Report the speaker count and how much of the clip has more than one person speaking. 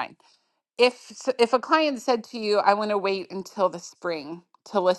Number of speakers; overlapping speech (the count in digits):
1, no overlap